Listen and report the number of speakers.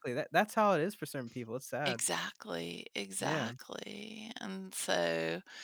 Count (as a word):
two